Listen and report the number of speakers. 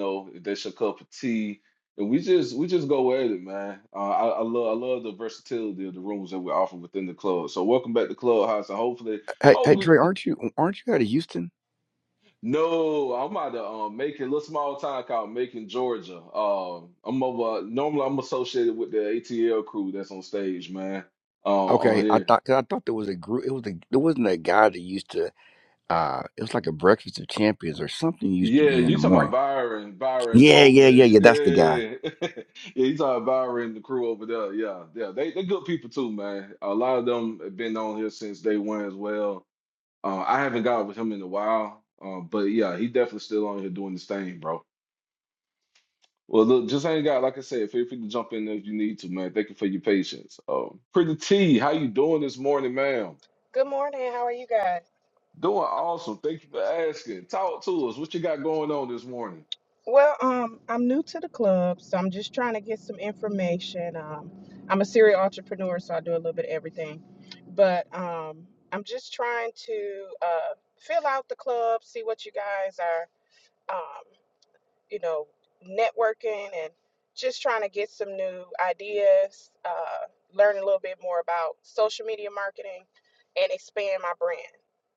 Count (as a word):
three